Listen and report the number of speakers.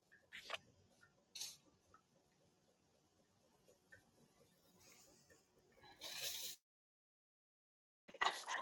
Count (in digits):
0